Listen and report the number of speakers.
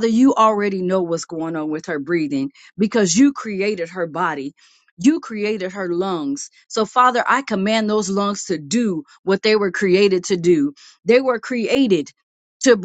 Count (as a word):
one